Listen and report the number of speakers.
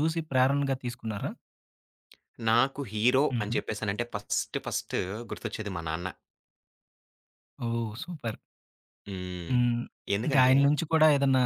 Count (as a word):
two